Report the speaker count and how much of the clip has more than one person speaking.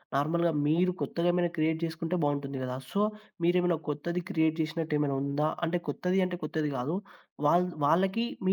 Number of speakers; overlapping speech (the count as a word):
one, no overlap